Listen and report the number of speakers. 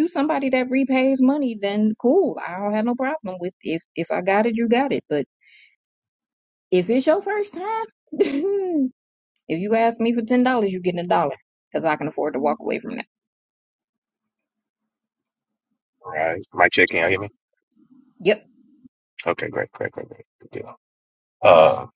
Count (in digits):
2